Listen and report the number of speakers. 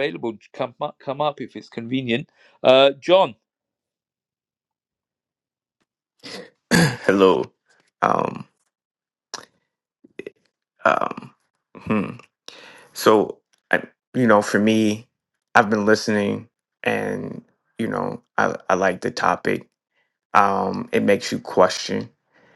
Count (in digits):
2